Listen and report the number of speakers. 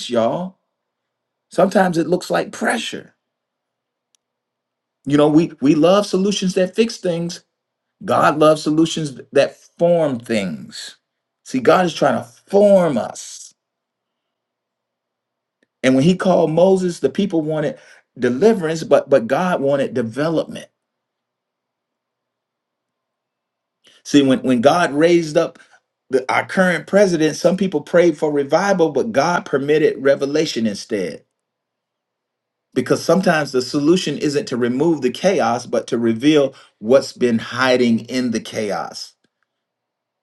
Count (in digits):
1